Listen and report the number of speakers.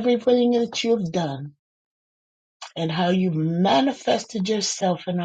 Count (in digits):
1